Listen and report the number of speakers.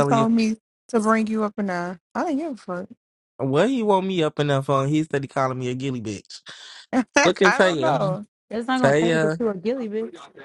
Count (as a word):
three